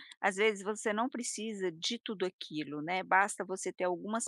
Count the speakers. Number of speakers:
1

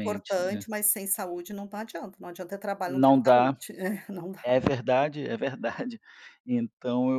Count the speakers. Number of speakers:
2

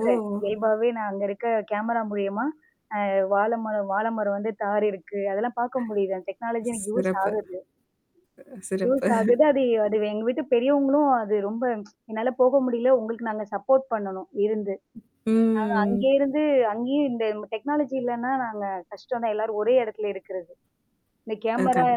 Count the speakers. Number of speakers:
2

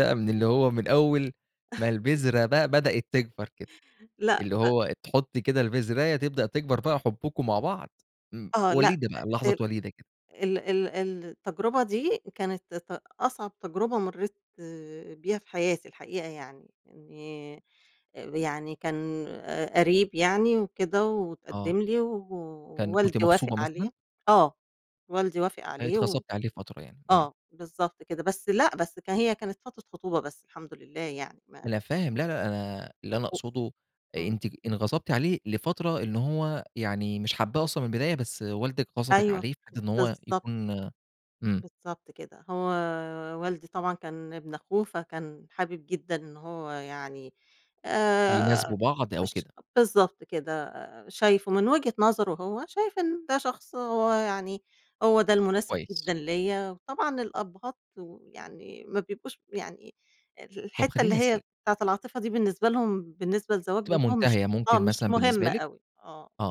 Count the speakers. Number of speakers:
2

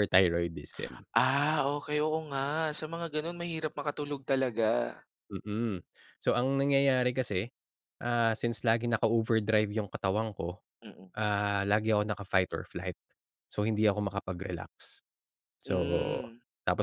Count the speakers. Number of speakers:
2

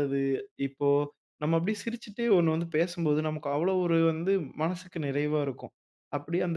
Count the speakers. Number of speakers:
1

